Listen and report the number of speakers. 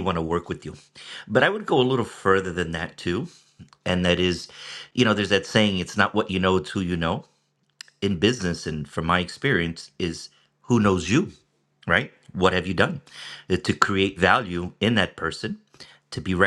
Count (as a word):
one